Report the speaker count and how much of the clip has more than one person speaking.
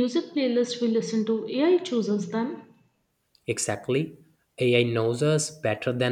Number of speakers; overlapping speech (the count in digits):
2, no overlap